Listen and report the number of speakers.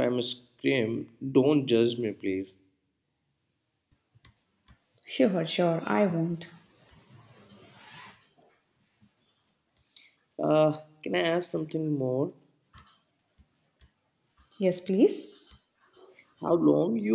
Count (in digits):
2